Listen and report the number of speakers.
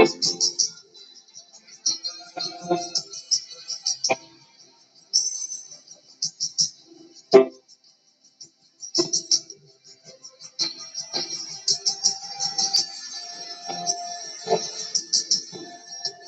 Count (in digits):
0